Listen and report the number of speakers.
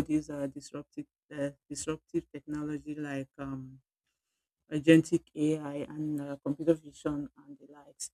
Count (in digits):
1